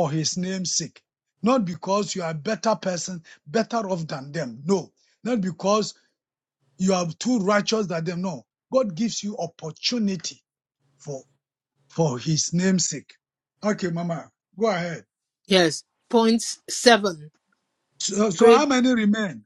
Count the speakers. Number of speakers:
two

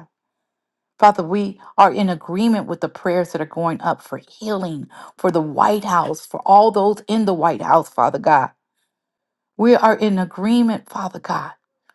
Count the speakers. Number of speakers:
one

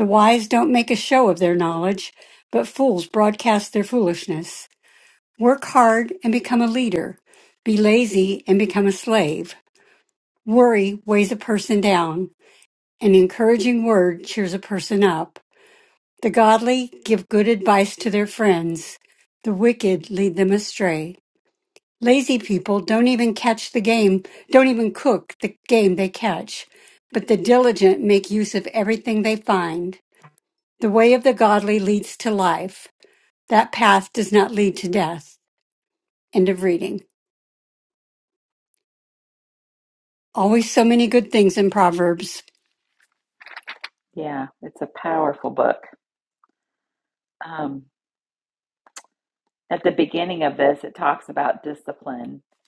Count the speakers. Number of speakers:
two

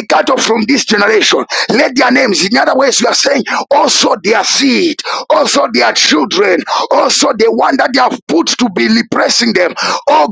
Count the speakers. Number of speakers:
one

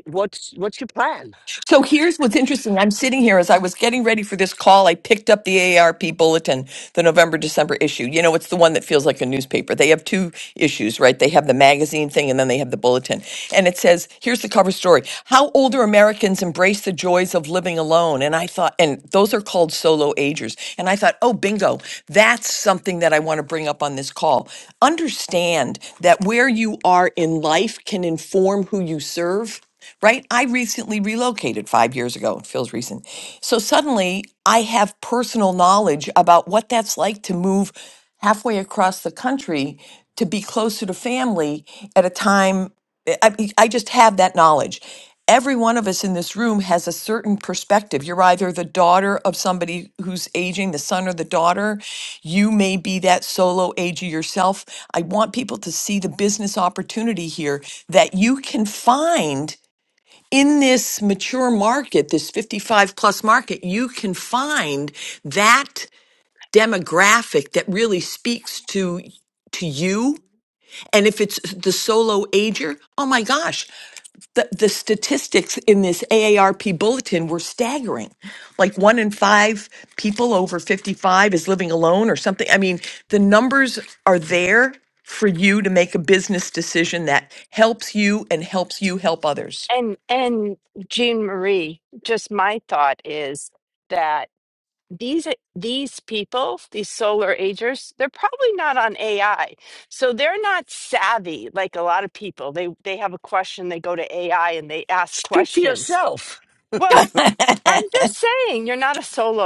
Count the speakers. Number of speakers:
three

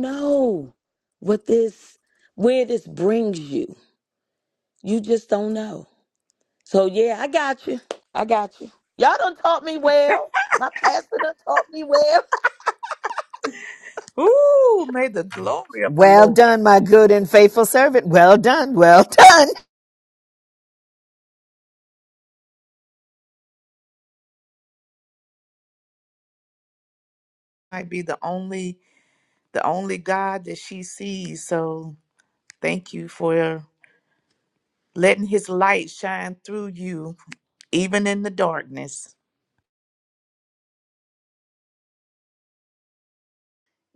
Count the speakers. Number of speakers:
three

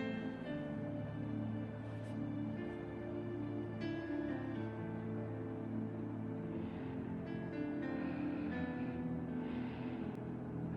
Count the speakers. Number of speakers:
zero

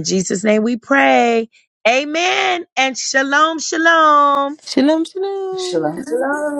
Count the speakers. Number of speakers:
three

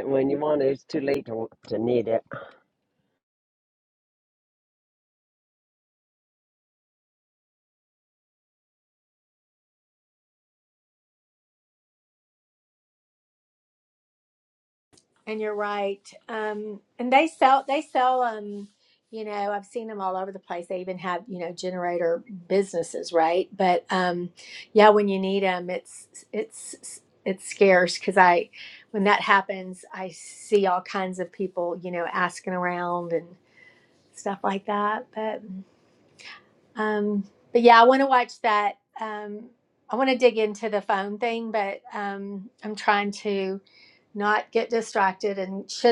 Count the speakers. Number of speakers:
two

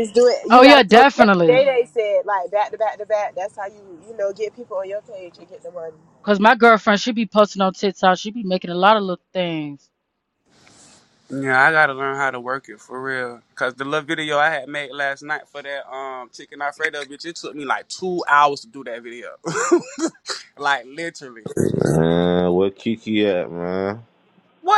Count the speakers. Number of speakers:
four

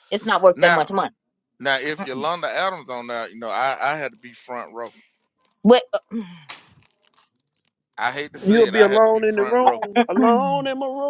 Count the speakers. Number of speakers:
three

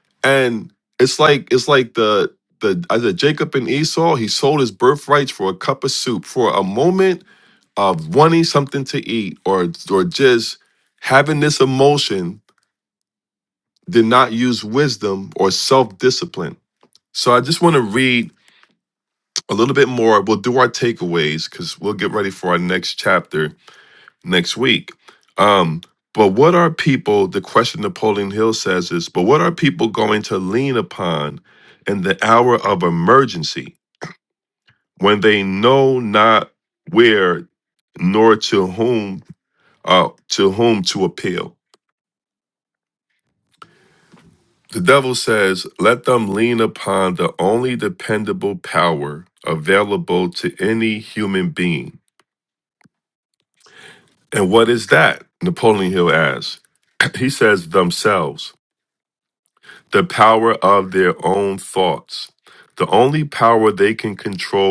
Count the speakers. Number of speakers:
one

